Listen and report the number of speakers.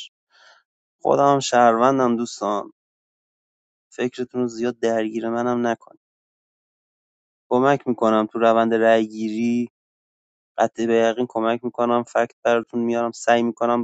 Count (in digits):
1